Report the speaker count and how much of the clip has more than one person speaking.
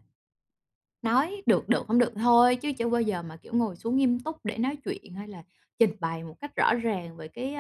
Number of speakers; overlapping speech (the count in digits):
1, no overlap